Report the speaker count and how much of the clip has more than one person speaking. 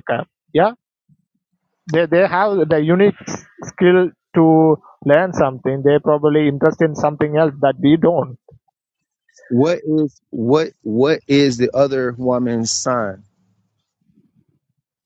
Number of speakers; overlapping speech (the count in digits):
2, no overlap